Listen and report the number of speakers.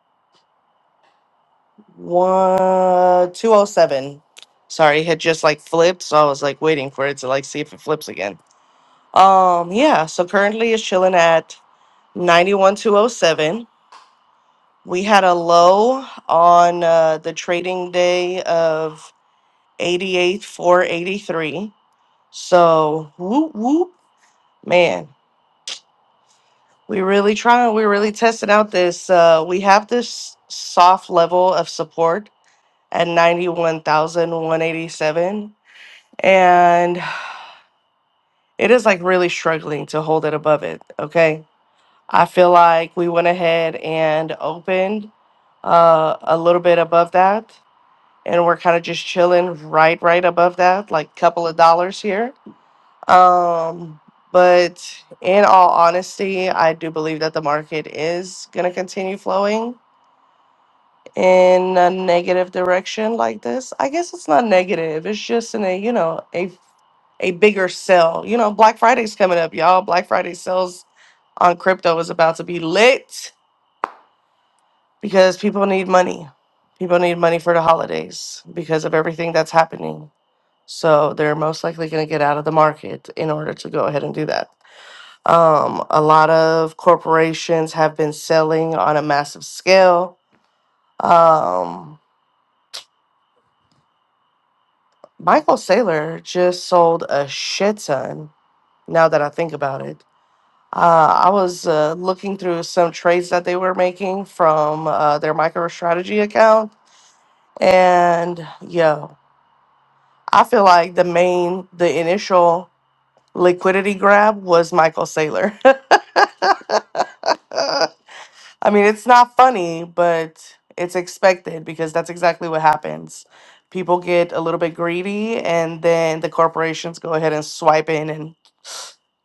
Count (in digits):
1